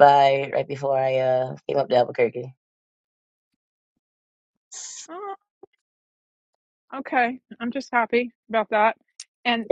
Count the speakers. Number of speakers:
2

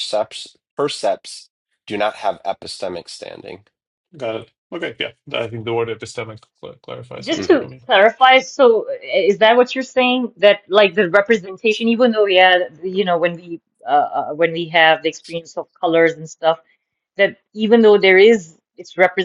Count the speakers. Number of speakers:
3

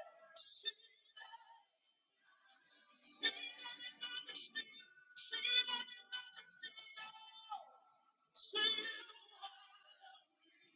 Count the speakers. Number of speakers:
0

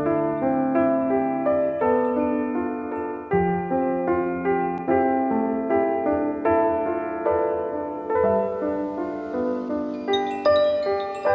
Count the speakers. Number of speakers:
0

